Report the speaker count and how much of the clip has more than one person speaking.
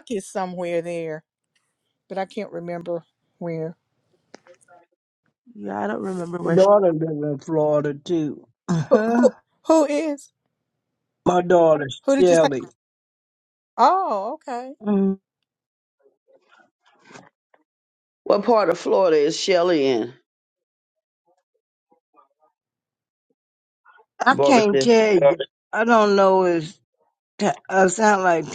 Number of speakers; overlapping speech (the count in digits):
4, about 5%